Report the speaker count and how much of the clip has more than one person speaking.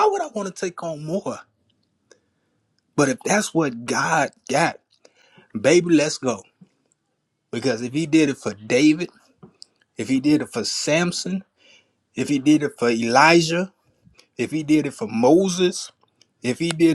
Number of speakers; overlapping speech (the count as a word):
one, no overlap